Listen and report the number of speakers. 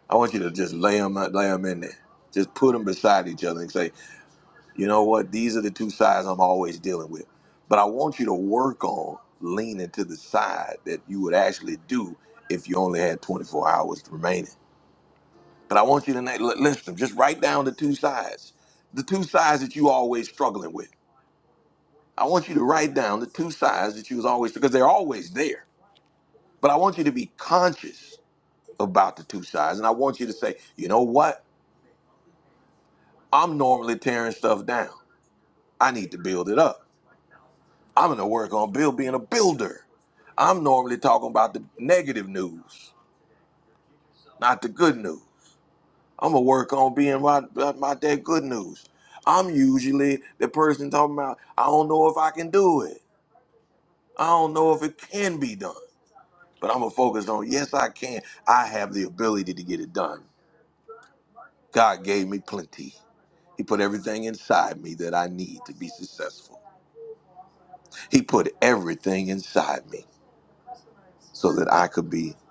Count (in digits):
1